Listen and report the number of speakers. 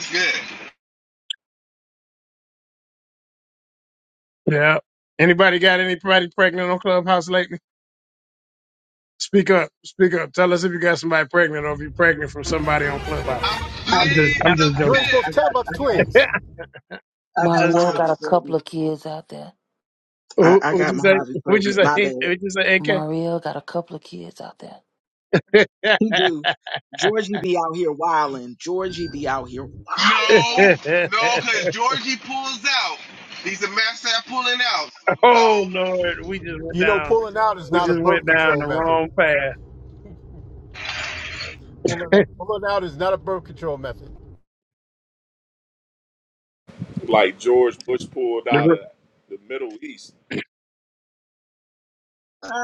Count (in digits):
6